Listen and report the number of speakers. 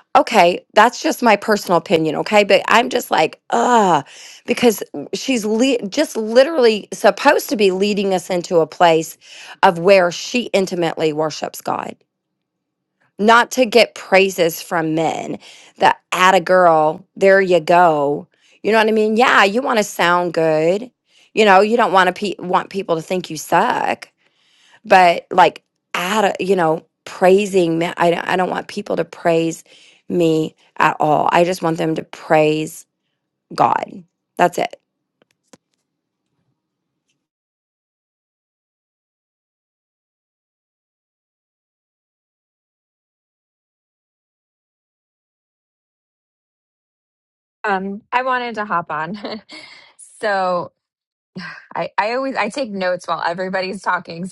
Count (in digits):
2